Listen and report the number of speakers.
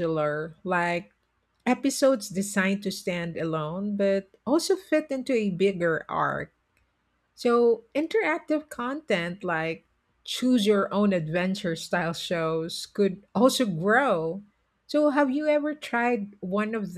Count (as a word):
one